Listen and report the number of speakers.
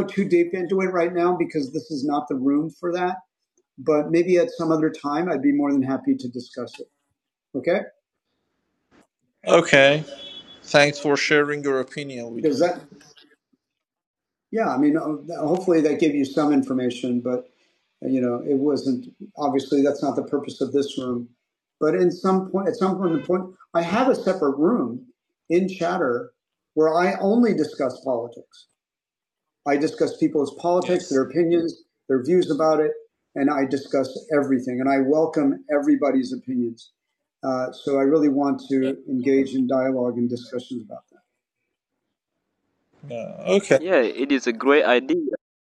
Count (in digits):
3